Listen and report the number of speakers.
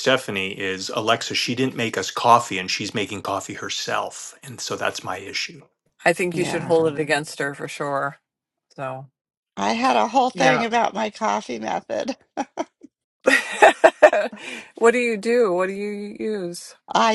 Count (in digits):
3